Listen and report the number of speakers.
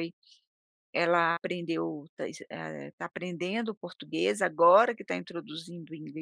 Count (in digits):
1